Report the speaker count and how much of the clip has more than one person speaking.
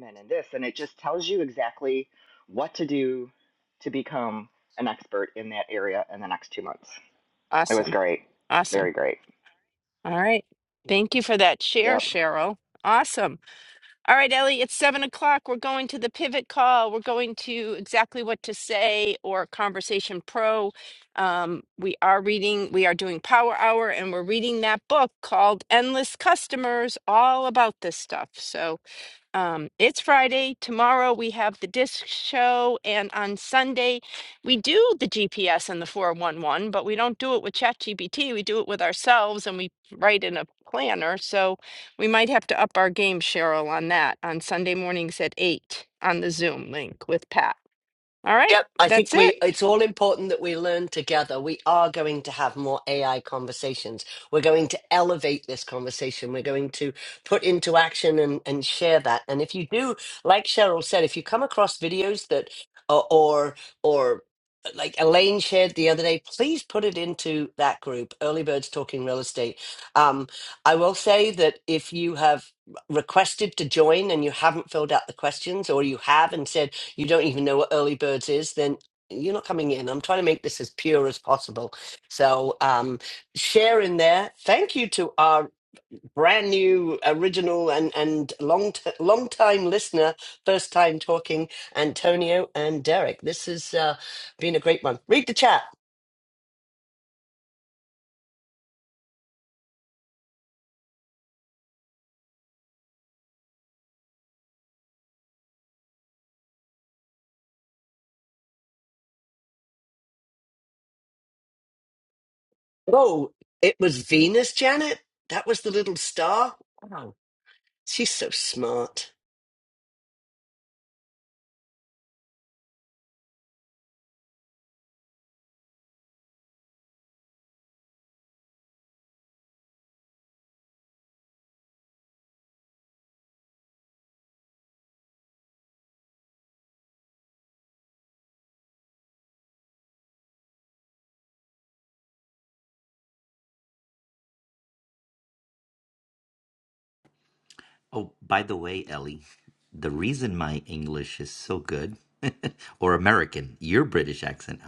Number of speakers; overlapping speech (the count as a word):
four, about 1%